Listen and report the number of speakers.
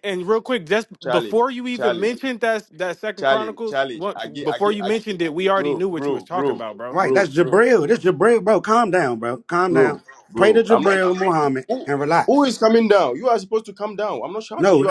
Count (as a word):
three